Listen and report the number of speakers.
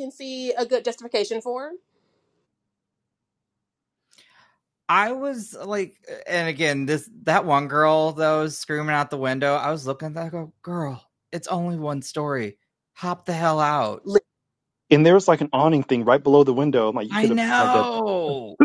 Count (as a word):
three